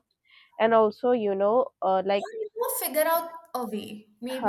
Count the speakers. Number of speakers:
2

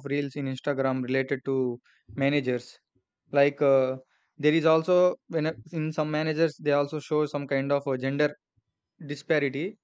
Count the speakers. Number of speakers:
1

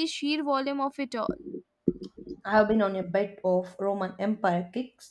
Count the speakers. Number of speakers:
2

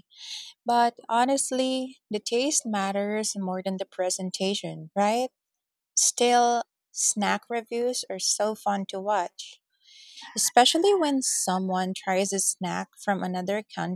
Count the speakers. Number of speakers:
1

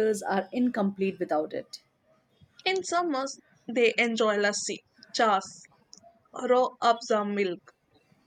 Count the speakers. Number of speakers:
2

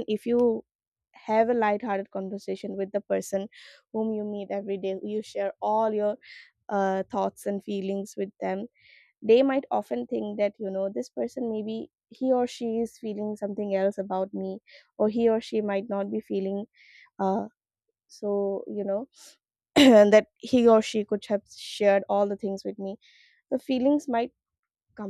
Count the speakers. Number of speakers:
1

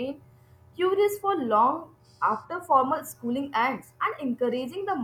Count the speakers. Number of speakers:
1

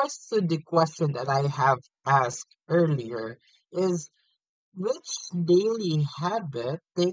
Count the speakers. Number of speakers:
1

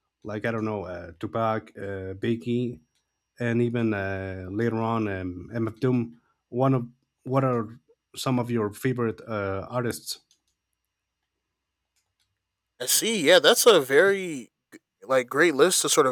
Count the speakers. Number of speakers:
2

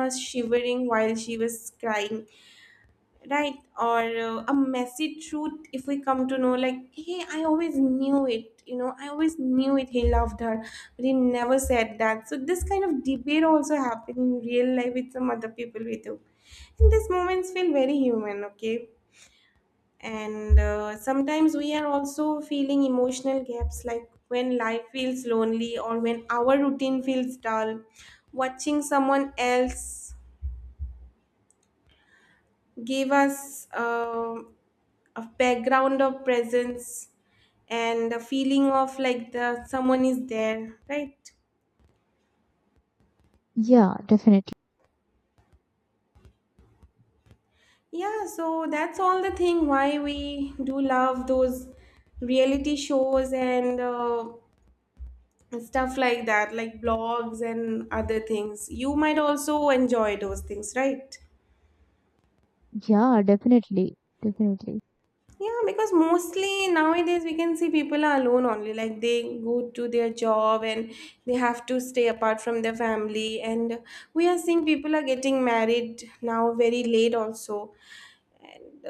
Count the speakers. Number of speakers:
2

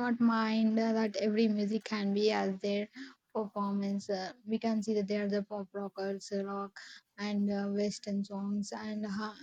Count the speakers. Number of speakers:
1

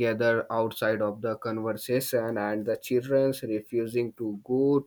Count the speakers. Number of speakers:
1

